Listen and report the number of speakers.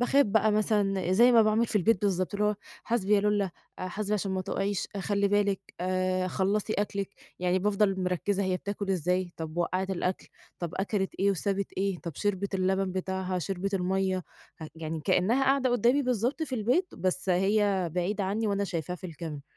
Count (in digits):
1